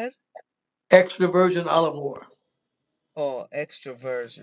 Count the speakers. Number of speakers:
two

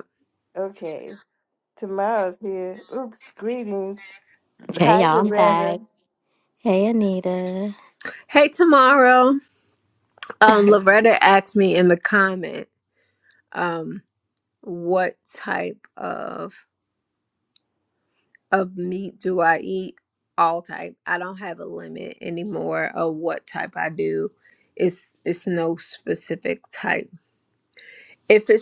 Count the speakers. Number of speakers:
three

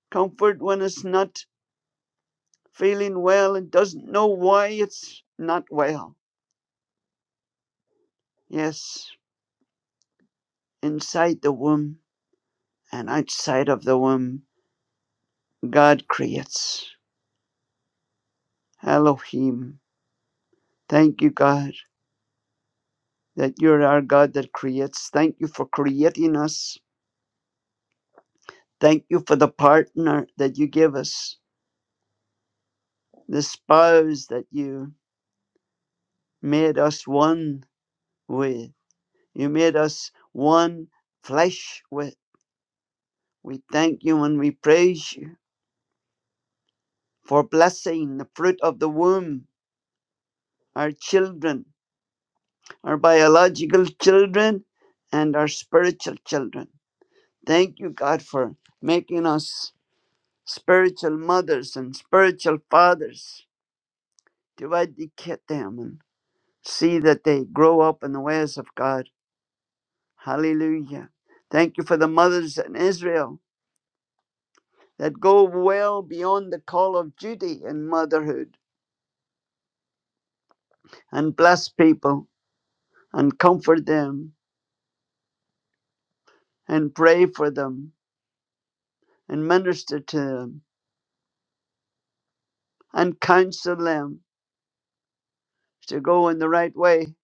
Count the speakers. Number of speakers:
one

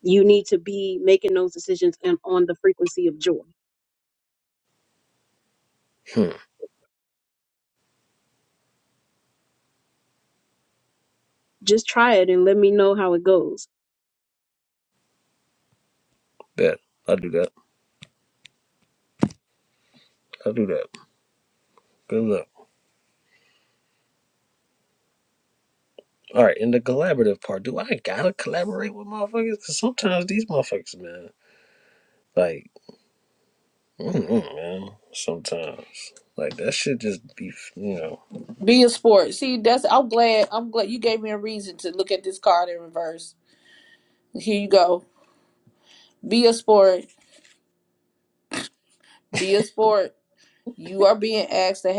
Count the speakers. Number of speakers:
three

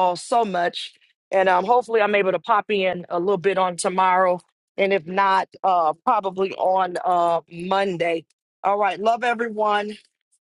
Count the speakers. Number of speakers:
one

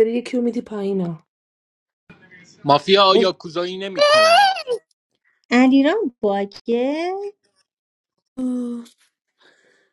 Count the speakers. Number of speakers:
three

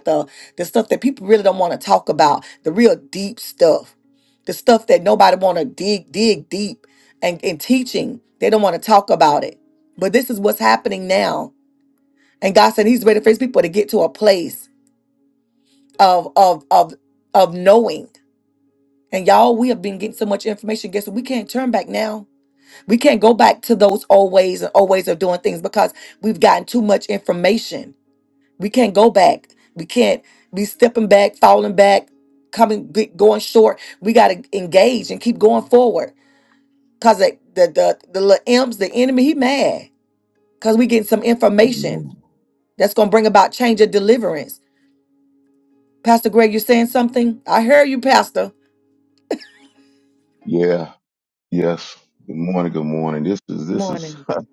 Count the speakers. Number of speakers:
two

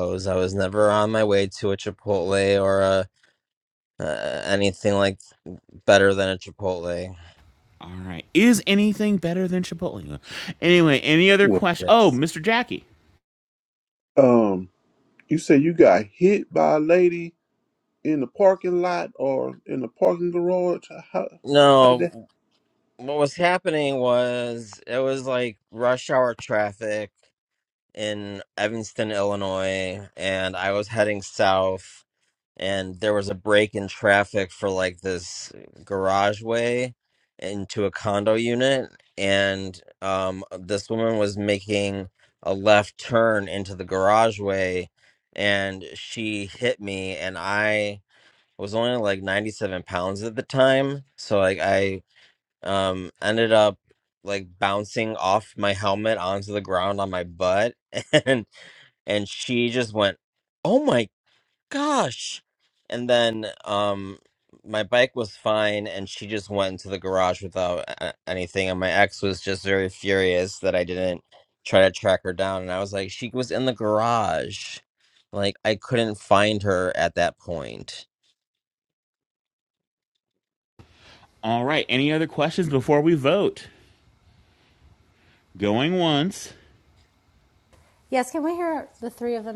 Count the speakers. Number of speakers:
four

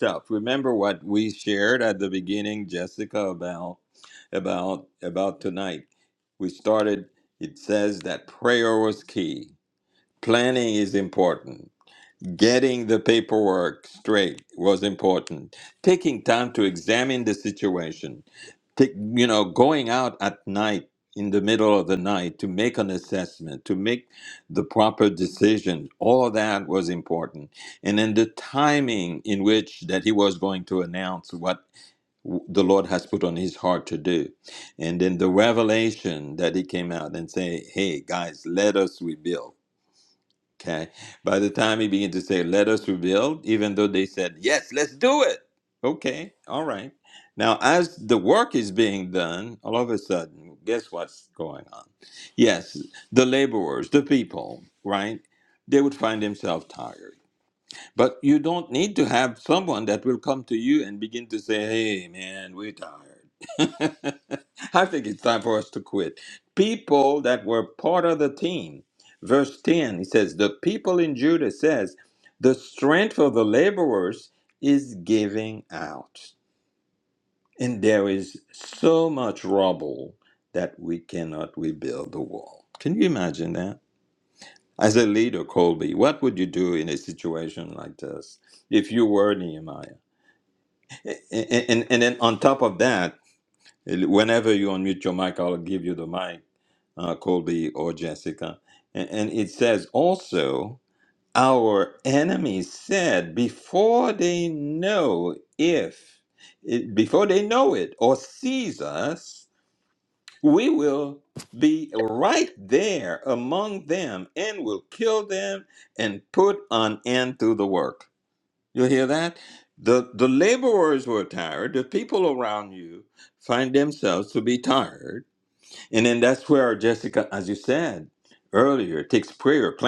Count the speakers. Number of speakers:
one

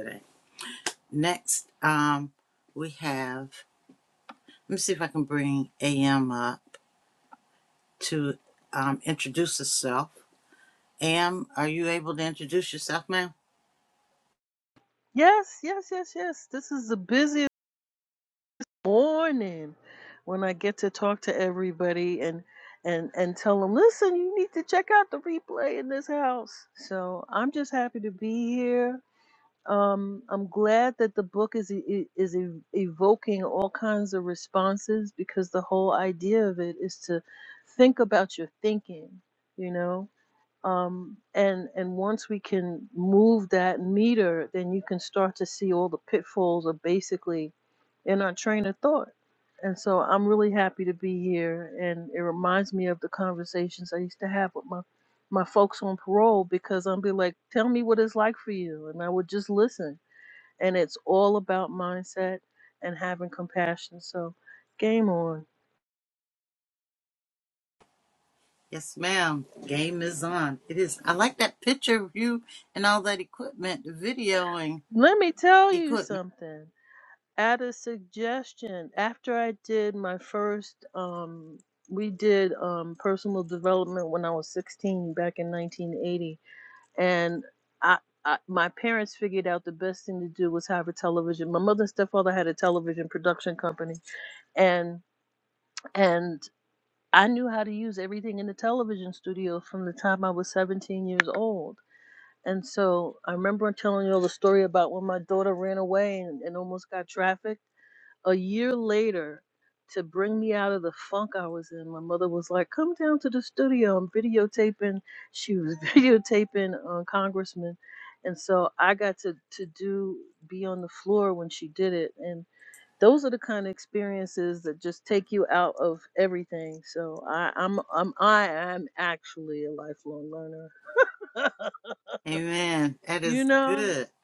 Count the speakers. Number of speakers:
two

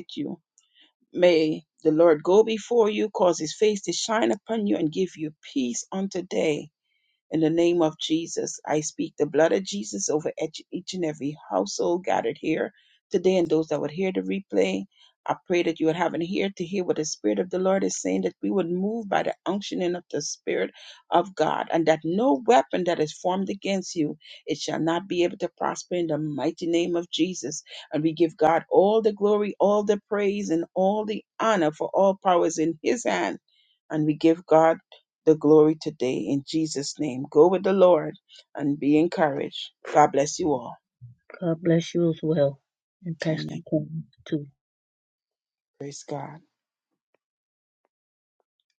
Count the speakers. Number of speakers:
two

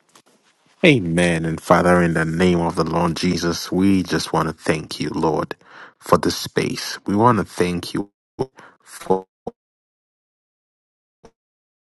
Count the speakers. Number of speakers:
one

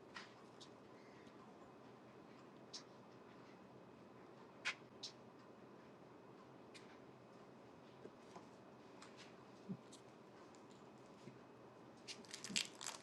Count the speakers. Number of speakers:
zero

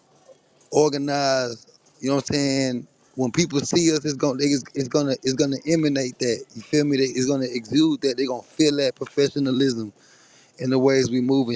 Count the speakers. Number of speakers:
one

